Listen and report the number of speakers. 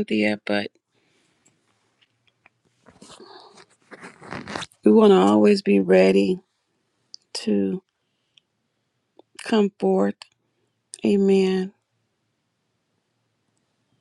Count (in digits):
1